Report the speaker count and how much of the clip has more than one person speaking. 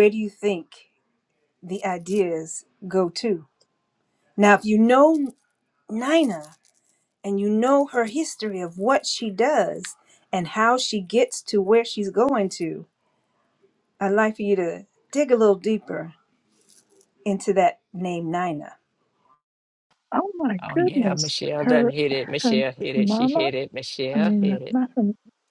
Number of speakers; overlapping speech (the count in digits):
3, about 9%